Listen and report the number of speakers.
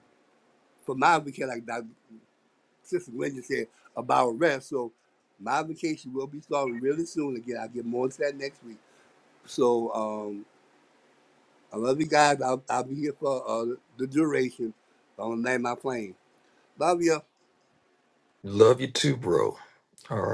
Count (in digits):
2